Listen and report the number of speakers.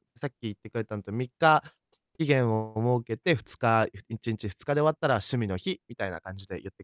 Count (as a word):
one